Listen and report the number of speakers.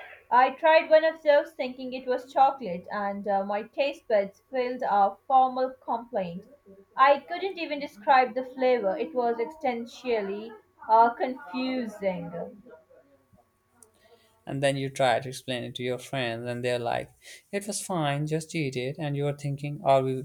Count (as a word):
two